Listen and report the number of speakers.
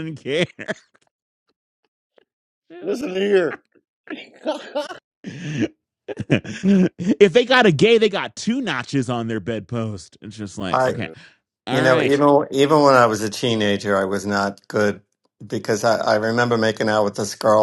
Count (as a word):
three